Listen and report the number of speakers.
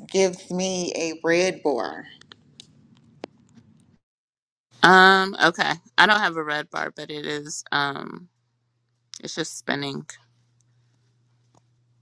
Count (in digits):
2